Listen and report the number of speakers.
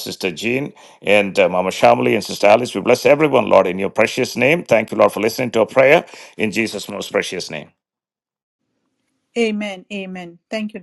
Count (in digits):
2